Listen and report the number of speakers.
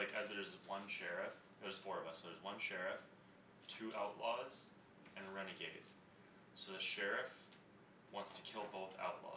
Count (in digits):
1